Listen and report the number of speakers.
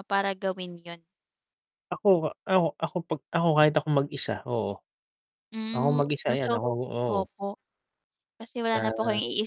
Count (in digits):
2